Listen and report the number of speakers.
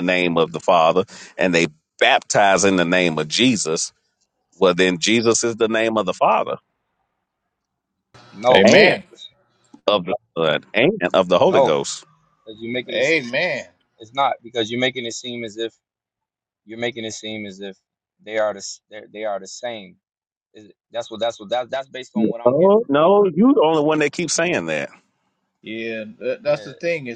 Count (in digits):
3